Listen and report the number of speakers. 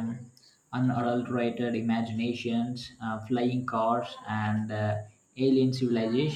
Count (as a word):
one